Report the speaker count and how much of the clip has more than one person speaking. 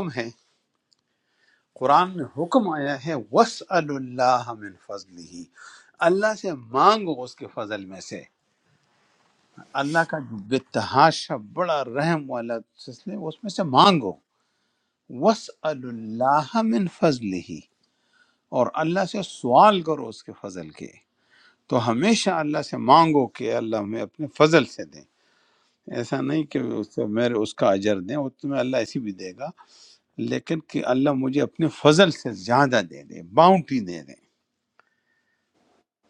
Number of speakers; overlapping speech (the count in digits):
1, no overlap